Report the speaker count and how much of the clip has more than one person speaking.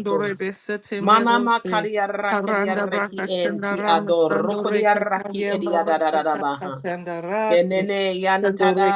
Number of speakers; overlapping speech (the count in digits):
2, about 71%